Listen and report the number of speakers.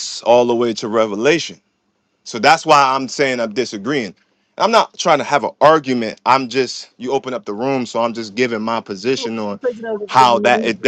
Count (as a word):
two